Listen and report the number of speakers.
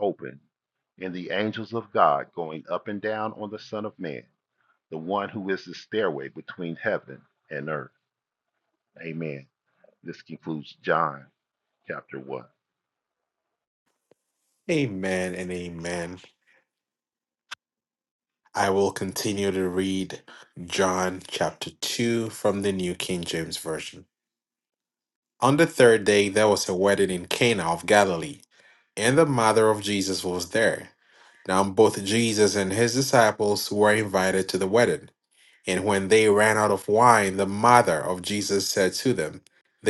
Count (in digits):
2